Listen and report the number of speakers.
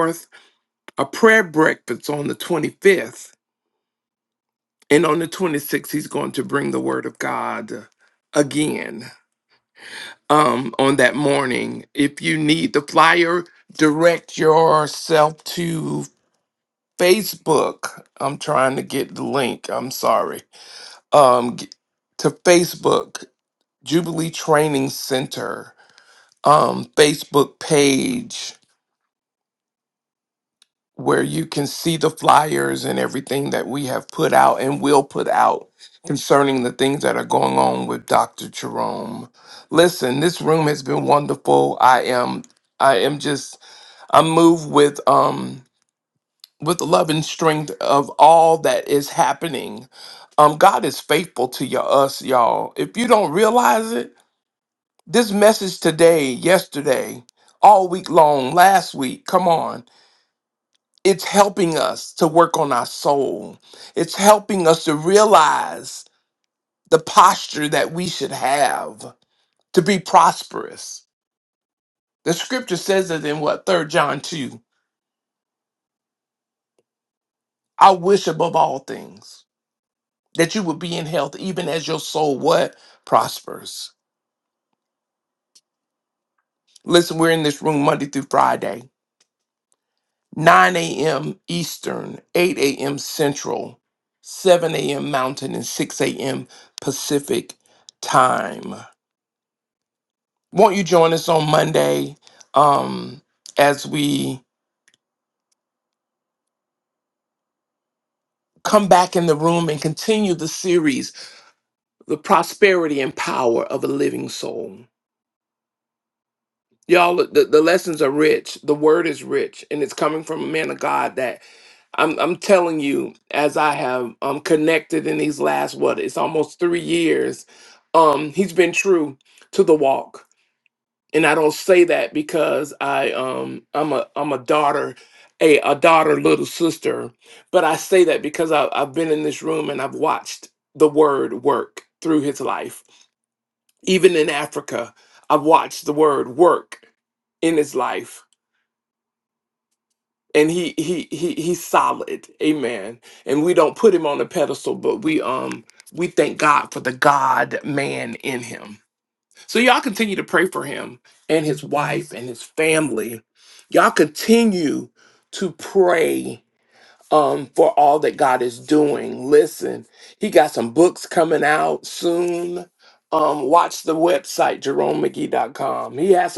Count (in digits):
1